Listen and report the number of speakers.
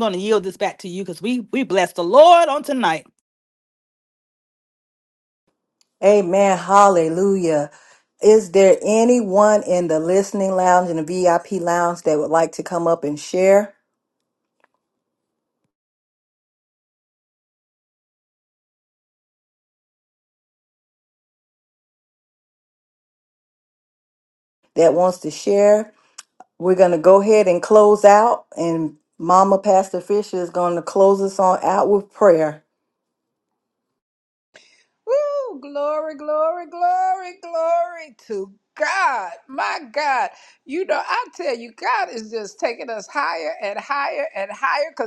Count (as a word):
three